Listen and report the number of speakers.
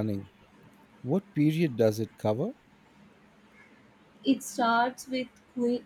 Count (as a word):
two